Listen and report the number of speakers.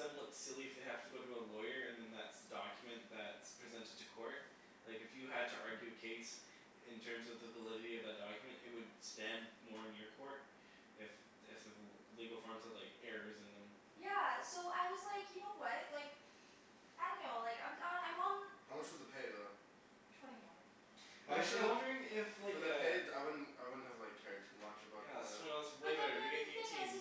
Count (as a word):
three